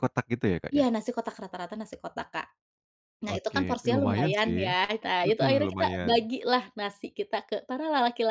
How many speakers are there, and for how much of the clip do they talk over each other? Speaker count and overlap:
2, about 29%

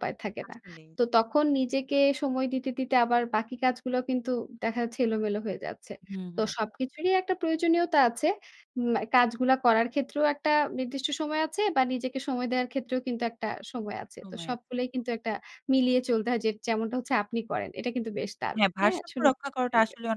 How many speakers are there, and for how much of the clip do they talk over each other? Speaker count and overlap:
2, about 7%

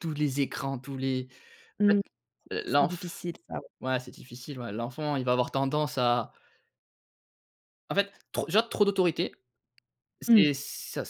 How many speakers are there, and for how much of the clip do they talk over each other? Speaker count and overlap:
2, about 7%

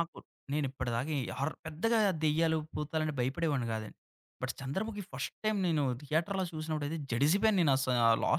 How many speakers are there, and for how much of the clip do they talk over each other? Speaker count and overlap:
1, no overlap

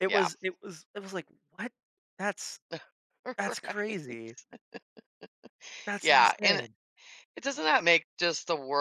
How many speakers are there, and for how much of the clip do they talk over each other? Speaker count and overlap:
2, about 19%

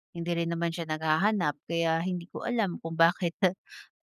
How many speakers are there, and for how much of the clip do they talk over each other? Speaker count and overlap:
1, no overlap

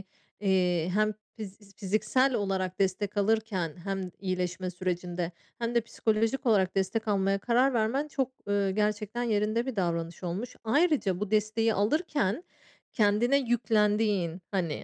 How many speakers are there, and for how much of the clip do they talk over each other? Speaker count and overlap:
1, no overlap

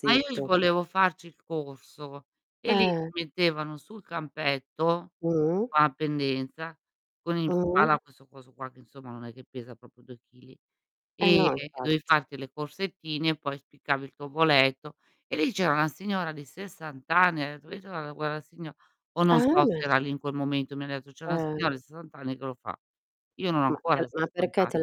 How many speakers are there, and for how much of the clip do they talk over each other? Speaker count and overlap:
2, about 17%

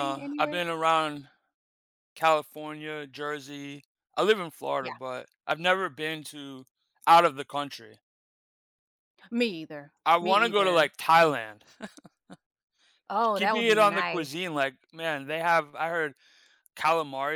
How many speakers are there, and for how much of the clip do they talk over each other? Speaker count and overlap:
2, about 13%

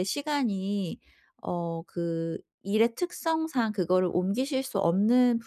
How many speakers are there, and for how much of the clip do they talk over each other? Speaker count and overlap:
1, no overlap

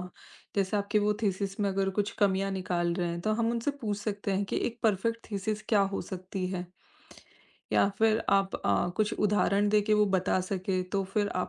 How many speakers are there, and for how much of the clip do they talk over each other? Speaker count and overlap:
1, no overlap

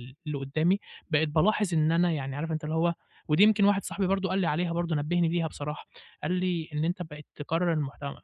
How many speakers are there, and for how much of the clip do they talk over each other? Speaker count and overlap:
1, no overlap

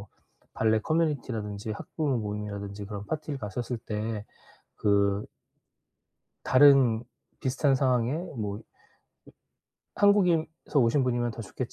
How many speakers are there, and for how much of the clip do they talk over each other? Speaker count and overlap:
1, no overlap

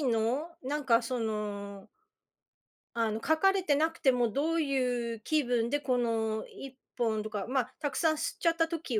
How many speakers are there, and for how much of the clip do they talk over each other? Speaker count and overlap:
1, no overlap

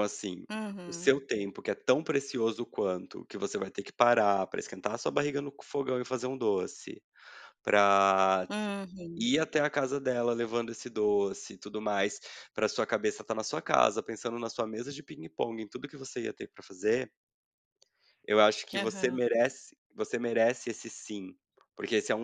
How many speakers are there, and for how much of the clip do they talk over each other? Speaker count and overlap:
2, about 3%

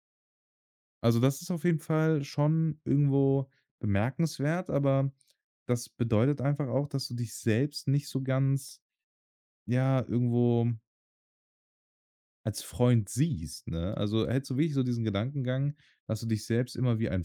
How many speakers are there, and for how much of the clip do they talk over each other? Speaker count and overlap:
1, no overlap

